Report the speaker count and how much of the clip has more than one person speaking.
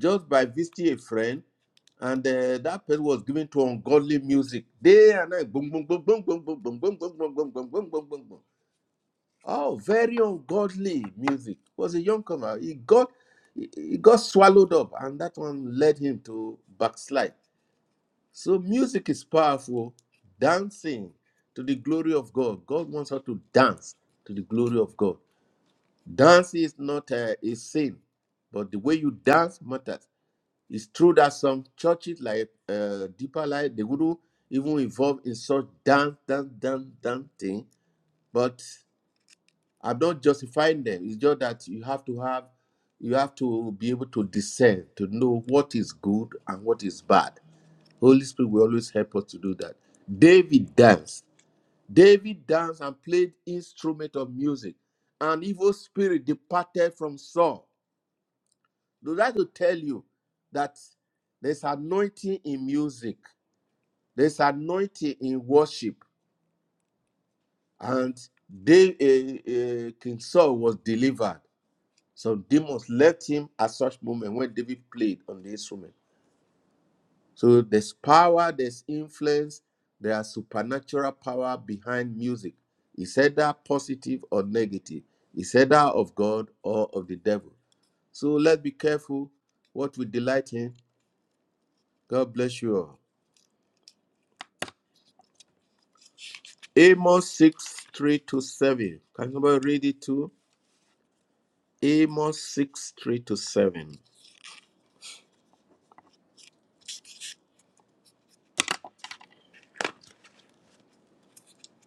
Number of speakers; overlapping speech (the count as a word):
one, no overlap